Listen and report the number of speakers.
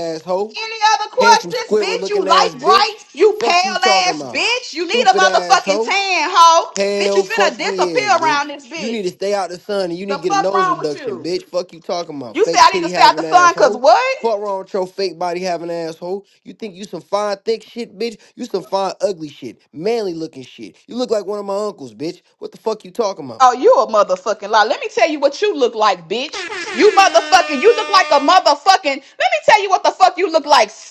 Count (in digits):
2